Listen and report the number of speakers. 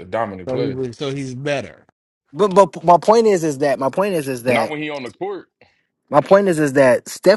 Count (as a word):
three